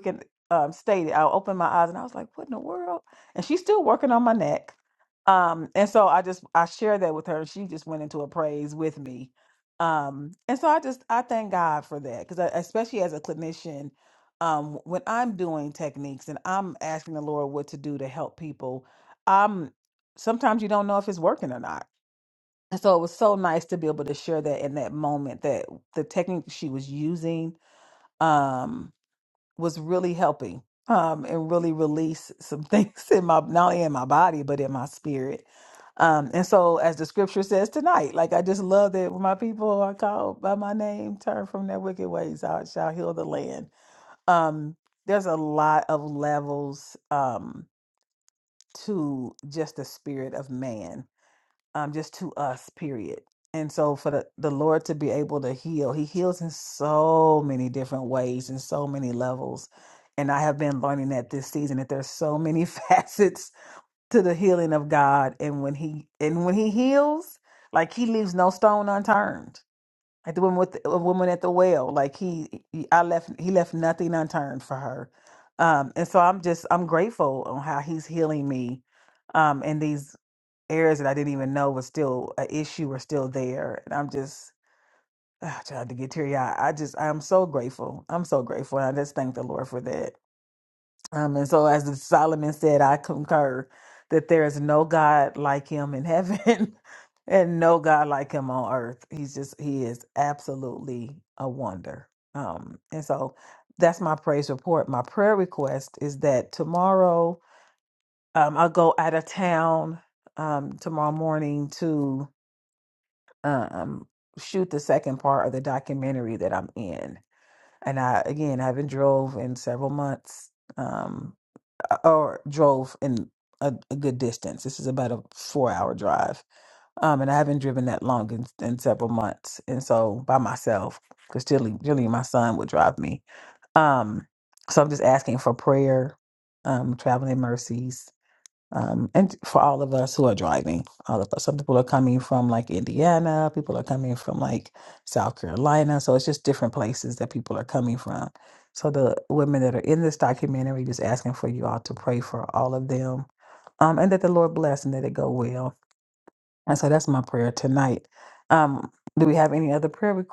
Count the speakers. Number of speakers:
one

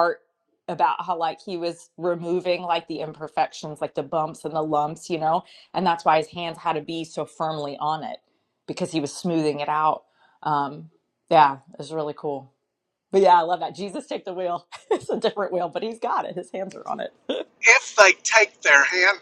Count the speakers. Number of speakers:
two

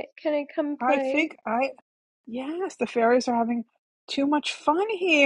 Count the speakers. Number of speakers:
two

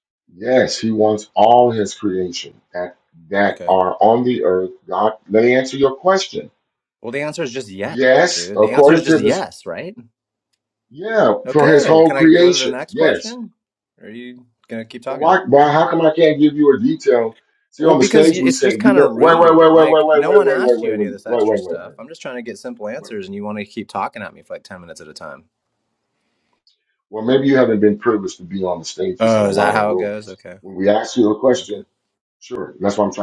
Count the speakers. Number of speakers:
two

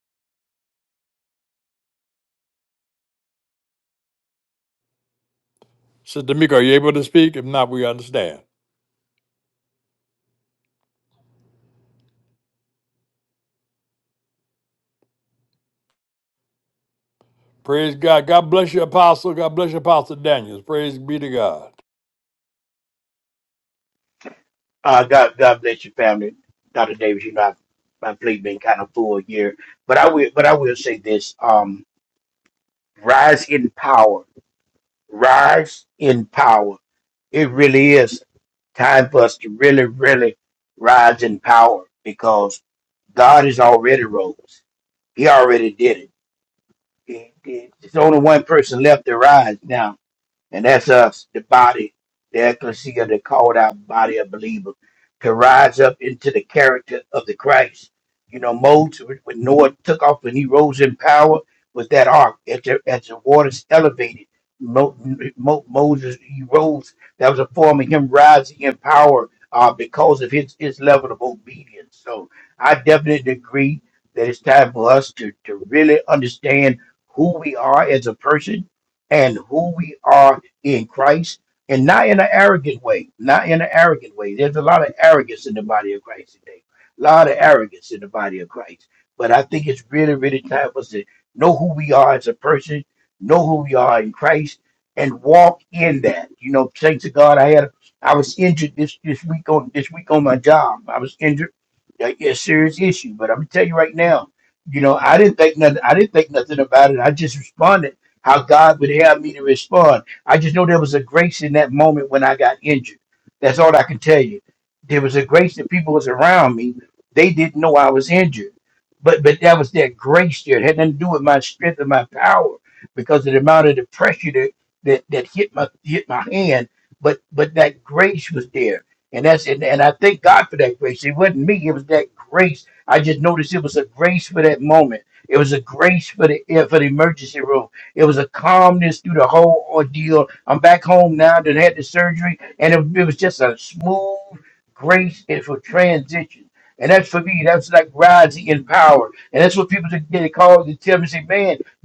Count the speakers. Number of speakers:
two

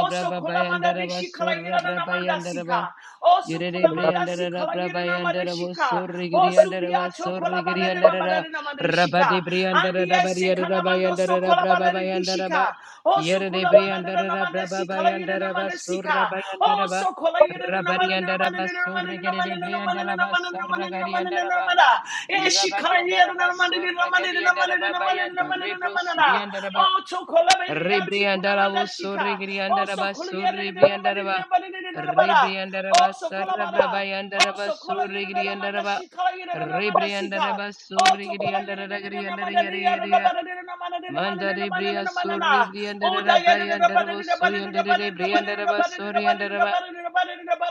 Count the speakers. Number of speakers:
two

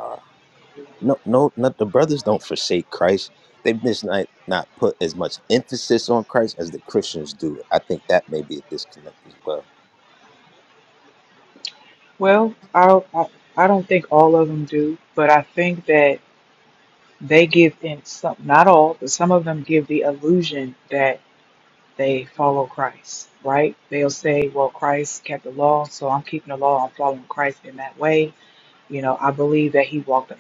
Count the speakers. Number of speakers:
two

